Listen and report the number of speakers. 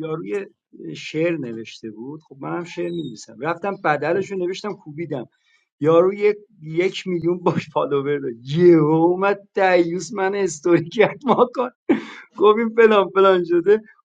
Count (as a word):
one